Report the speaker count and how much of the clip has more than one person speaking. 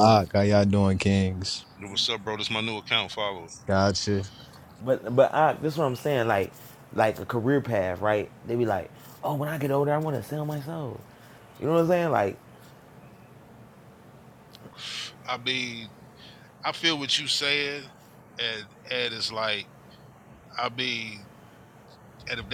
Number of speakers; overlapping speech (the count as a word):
three, about 1%